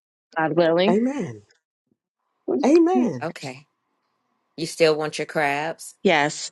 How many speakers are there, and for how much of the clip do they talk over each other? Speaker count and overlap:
3, about 2%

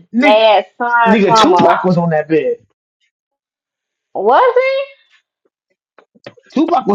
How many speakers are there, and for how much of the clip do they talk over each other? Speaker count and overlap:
2, about 10%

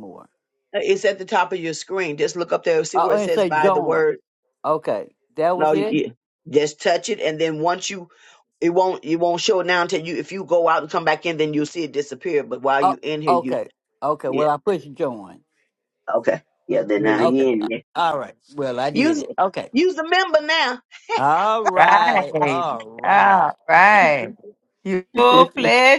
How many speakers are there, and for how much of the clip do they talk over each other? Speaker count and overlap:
3, about 18%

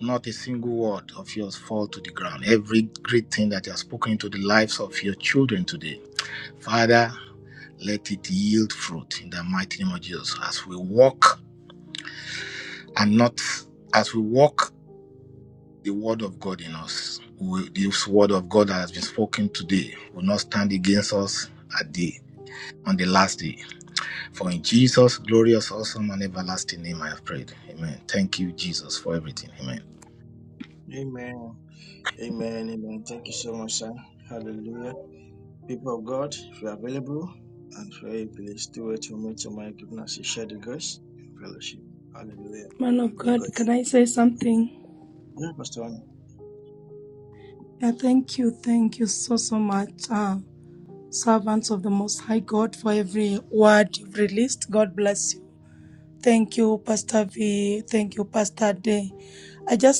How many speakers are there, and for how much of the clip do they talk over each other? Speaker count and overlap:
3, under 1%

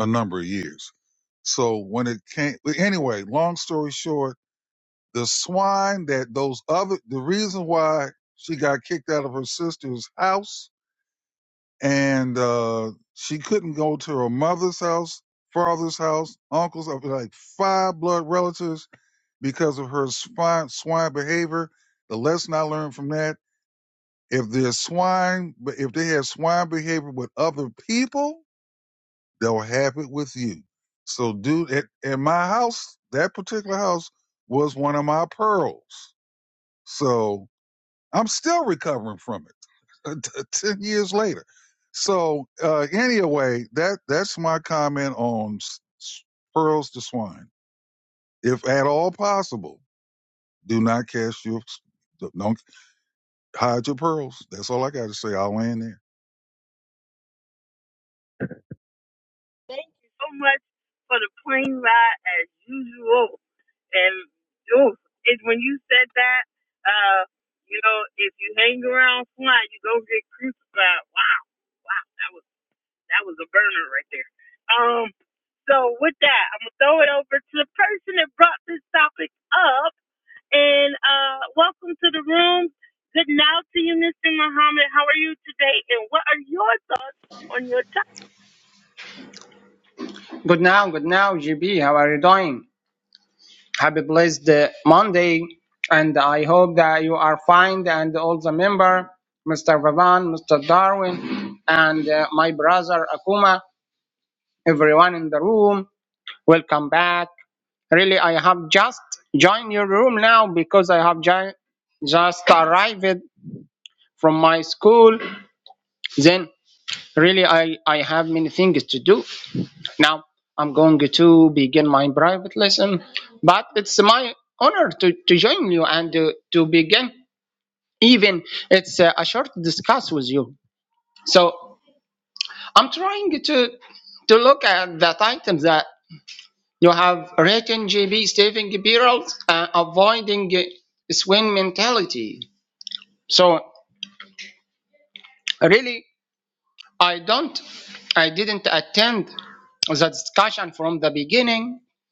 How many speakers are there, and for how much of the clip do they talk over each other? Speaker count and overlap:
3, no overlap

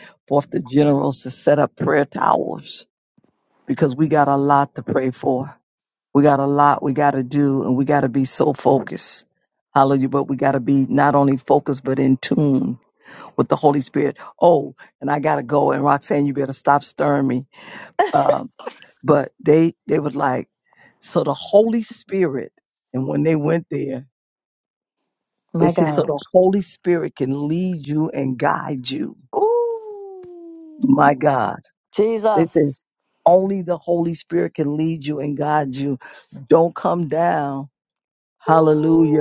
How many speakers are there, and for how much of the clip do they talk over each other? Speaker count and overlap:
2, about 3%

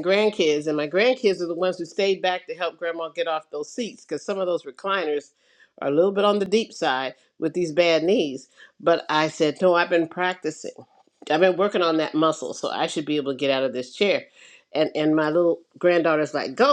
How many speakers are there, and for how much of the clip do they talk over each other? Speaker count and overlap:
1, no overlap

